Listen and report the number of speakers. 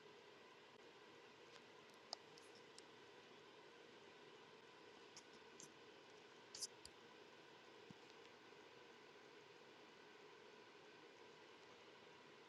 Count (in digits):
0